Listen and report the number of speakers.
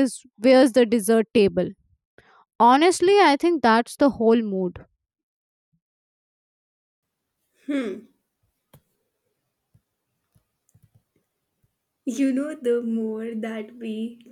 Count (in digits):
2